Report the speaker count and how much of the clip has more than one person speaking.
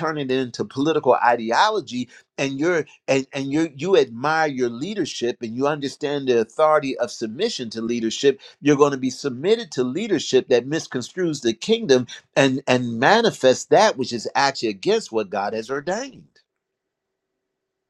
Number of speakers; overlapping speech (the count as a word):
one, no overlap